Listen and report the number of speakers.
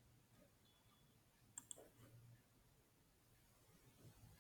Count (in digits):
0